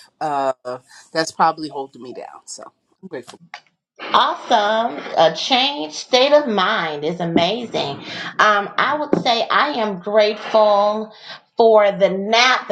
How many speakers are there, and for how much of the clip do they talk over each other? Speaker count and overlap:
2, no overlap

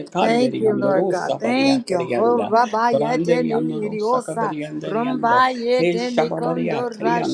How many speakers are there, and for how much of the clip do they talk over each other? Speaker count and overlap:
2, about 74%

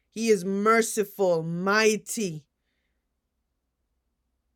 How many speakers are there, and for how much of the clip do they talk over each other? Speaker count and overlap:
1, no overlap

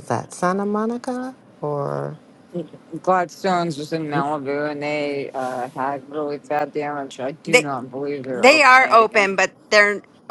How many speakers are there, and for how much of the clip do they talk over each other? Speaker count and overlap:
3, about 11%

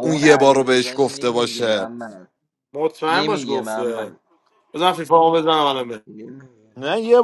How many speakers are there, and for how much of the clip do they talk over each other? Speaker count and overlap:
3, about 40%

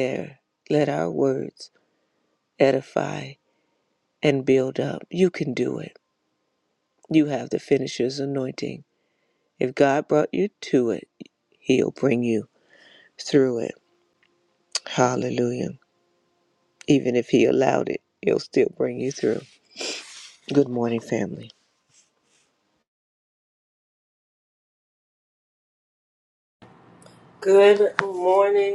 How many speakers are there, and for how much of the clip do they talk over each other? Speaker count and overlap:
2, no overlap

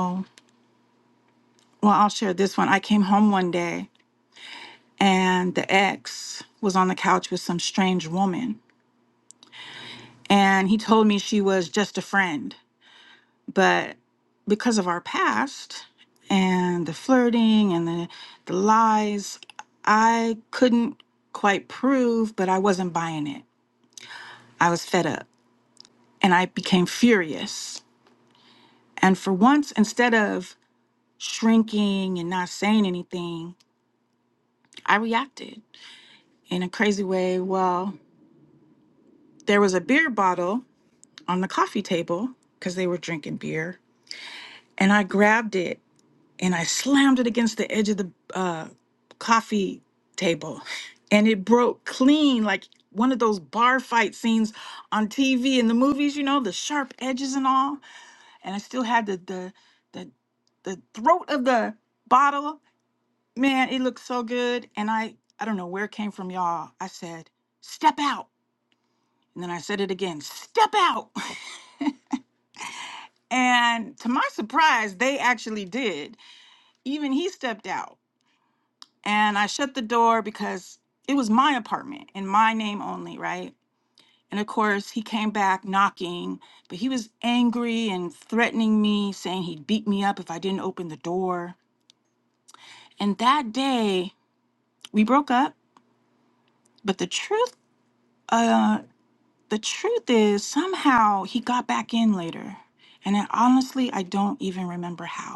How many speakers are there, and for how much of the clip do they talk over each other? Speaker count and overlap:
1, no overlap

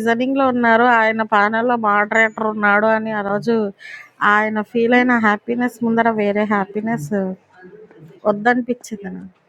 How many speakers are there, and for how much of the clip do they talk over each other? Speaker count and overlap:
1, no overlap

